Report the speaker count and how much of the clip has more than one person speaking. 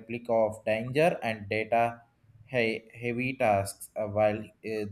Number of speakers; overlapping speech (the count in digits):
1, no overlap